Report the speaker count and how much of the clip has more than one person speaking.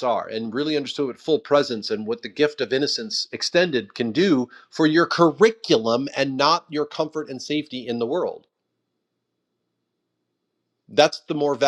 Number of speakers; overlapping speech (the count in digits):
1, no overlap